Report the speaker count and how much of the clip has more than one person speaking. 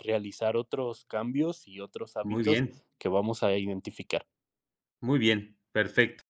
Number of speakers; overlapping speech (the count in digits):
2, about 5%